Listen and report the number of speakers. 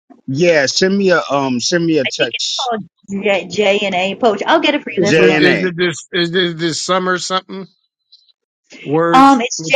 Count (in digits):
3